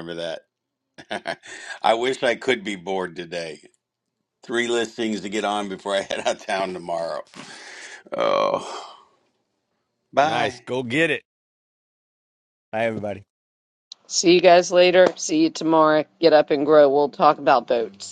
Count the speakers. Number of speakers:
3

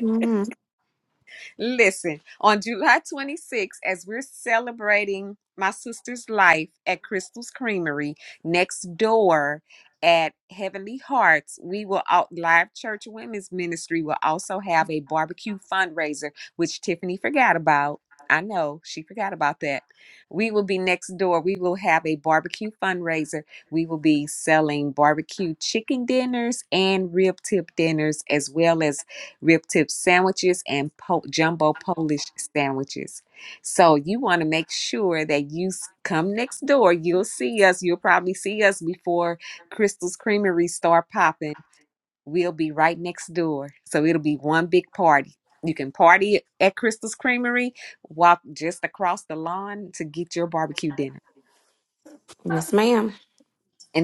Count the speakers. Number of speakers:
2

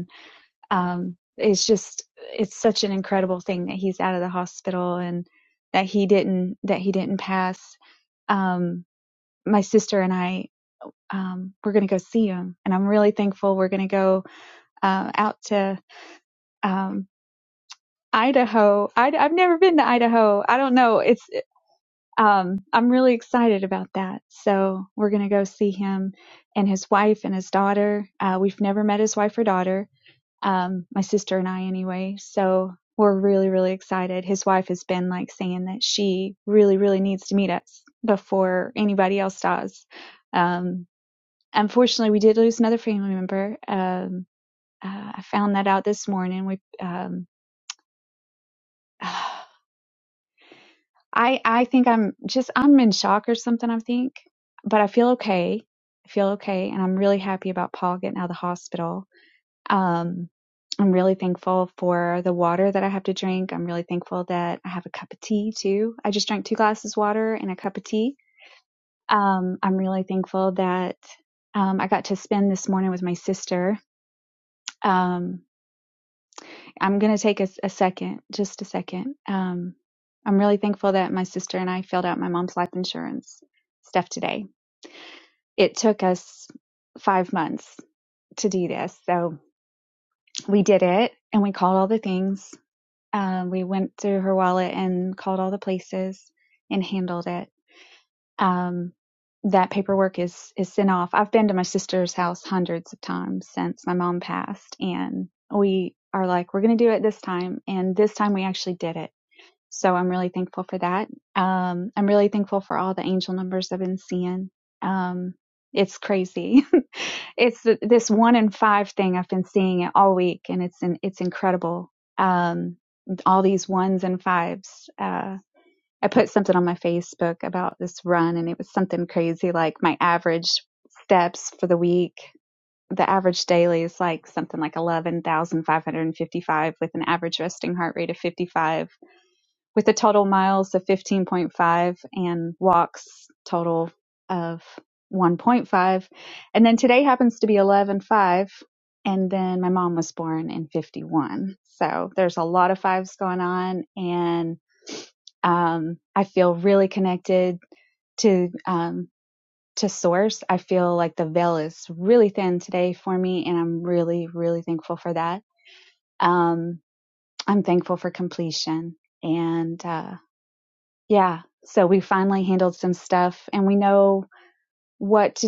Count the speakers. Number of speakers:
1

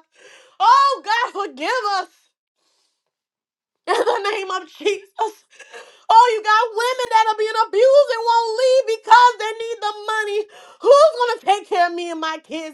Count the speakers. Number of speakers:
1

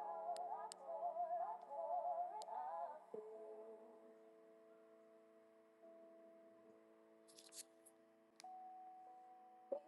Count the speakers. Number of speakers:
0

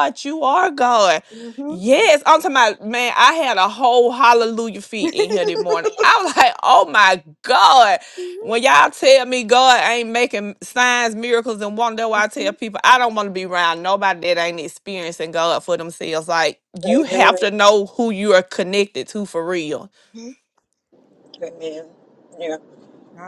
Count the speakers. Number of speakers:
3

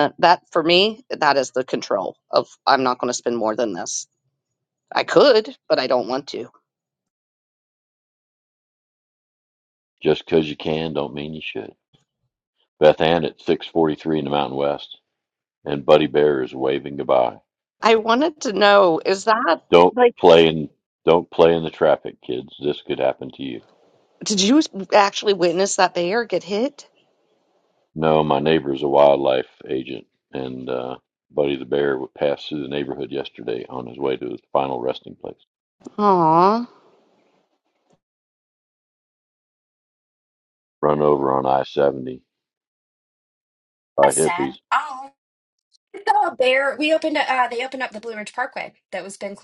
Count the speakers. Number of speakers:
3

